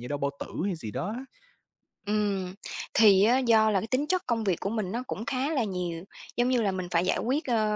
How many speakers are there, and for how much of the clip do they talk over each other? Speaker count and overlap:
2, no overlap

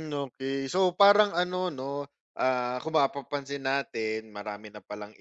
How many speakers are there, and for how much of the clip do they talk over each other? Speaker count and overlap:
1, no overlap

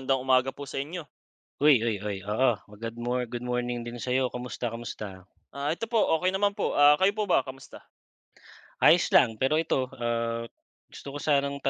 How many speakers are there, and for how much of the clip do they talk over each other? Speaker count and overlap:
2, no overlap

